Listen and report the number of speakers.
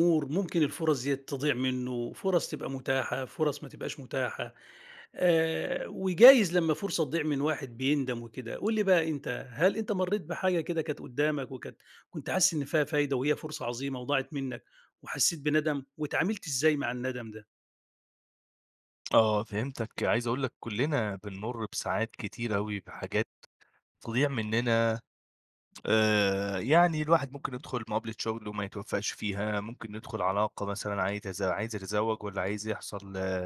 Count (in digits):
2